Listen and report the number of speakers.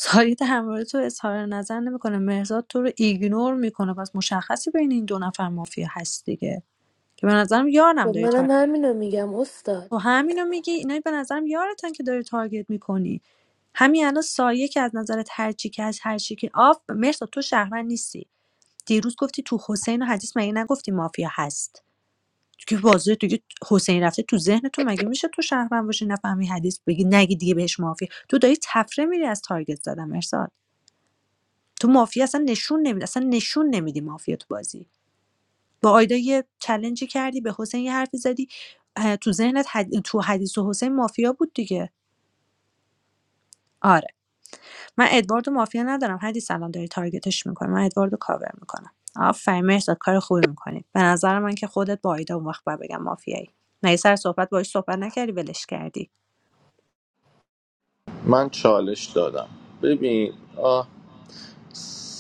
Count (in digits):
3